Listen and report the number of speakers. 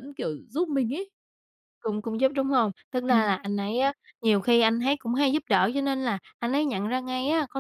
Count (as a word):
two